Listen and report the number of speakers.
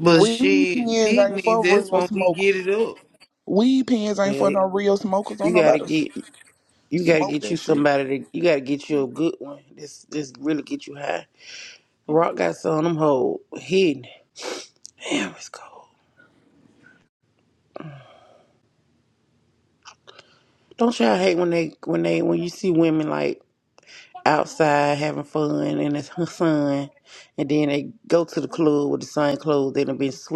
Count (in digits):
3